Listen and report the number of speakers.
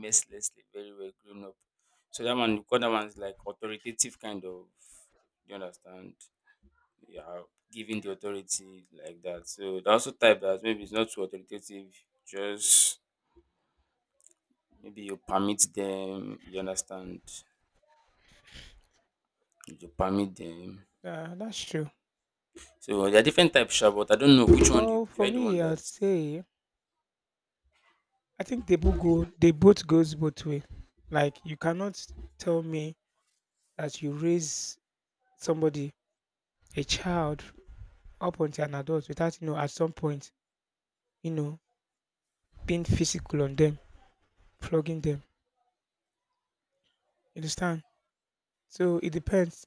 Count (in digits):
2